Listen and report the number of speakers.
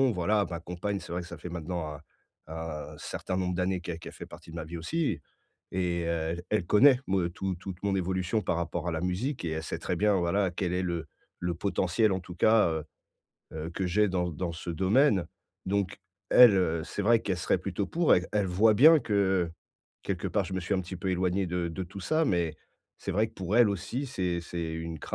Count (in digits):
1